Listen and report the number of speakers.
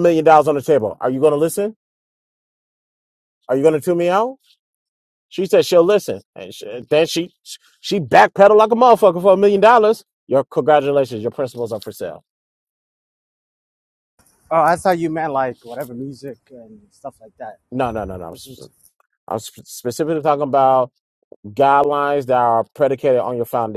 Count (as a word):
two